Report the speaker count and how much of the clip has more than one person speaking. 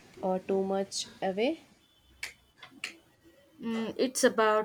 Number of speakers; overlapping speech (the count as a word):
two, no overlap